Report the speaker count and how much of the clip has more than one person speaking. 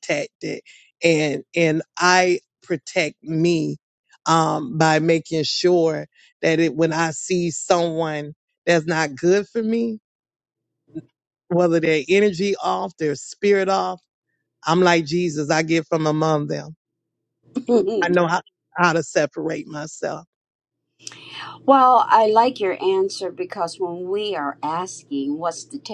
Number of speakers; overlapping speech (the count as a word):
two, no overlap